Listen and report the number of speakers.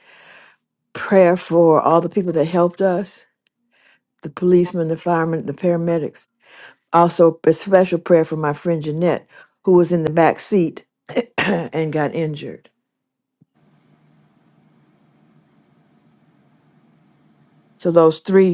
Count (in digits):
1